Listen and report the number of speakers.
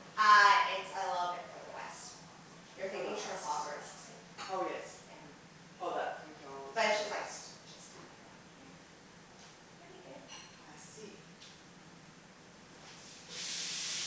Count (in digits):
2